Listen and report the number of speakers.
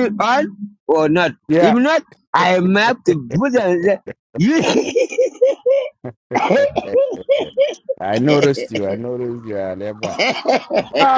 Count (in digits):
2